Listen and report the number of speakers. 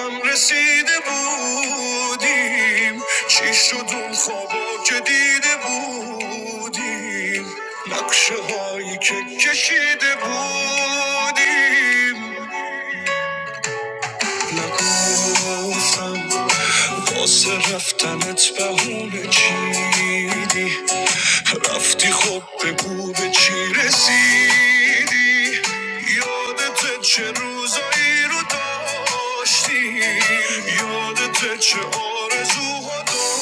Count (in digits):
1